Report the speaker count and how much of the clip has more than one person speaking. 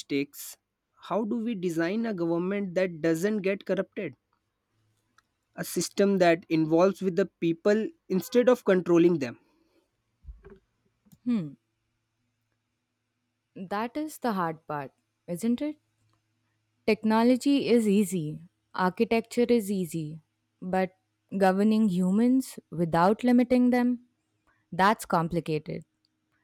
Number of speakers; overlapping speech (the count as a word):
two, no overlap